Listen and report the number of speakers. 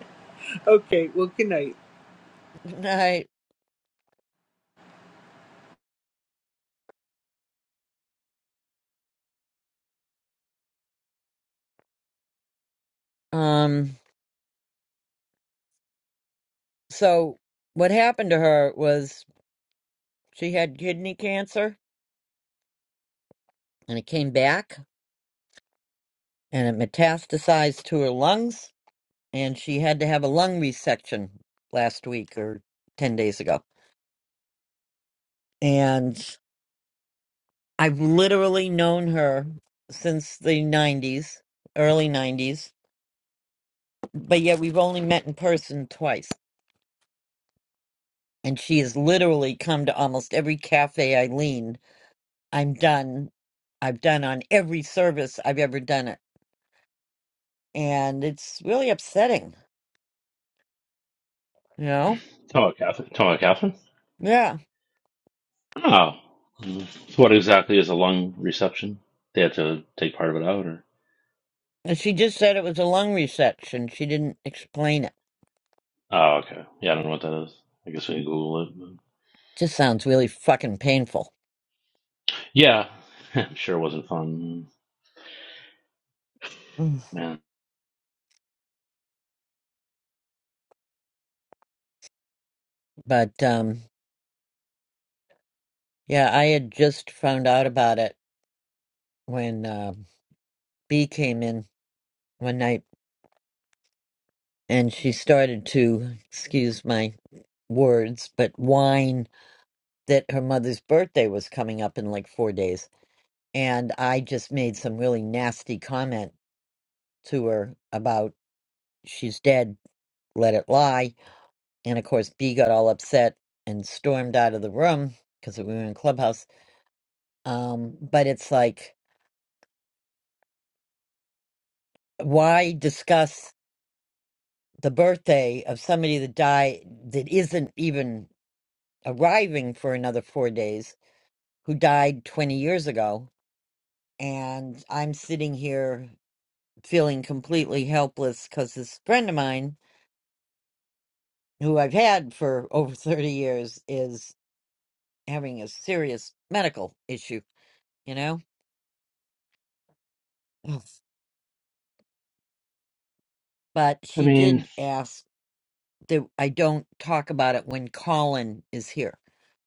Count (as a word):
three